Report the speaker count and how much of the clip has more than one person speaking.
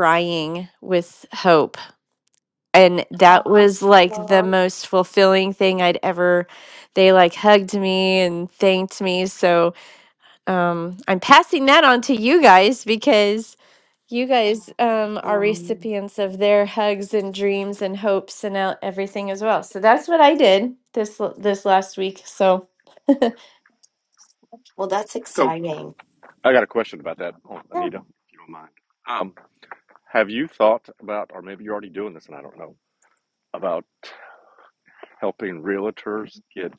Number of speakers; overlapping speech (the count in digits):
3, about 3%